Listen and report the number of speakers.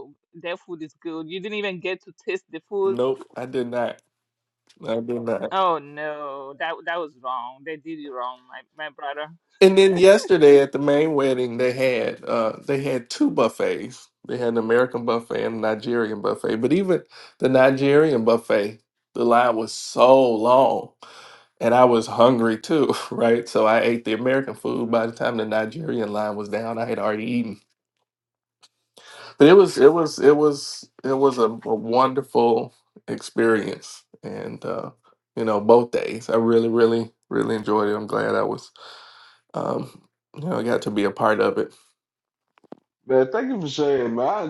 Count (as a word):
three